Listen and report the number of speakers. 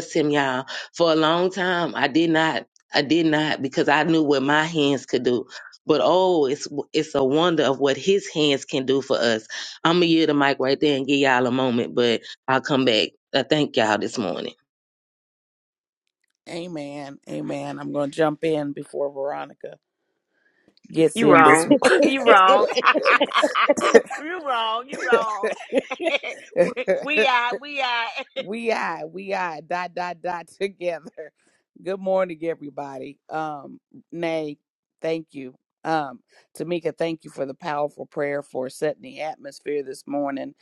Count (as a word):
three